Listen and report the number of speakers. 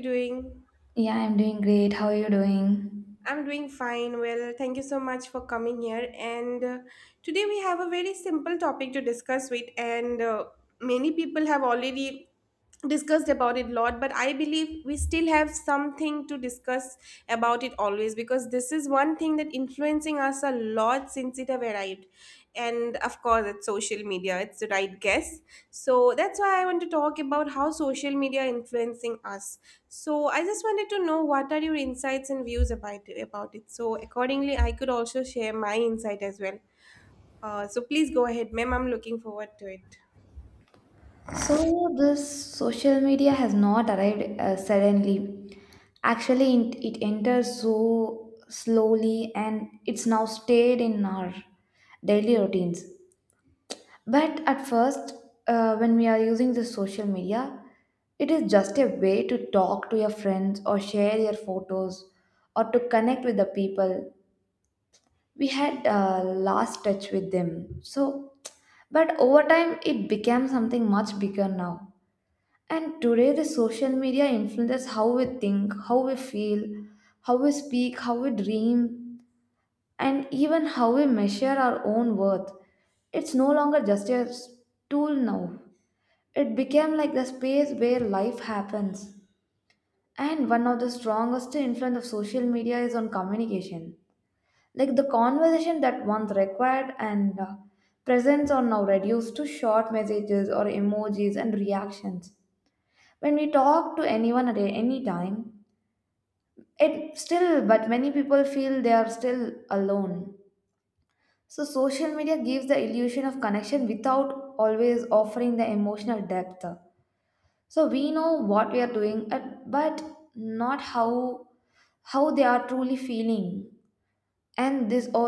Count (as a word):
two